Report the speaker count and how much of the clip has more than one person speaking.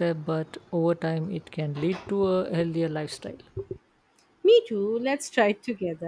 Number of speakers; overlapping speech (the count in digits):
2, no overlap